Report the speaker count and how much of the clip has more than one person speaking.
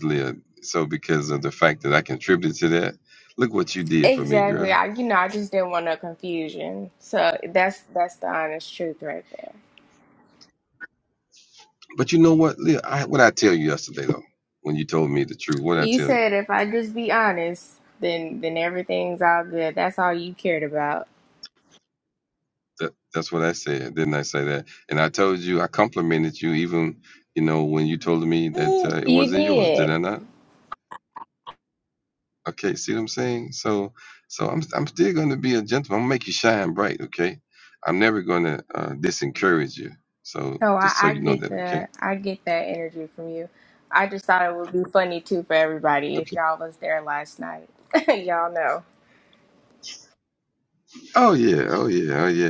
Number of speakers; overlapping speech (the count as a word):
two, about 8%